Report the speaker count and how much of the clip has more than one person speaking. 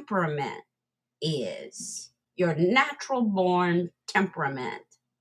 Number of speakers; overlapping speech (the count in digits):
1, no overlap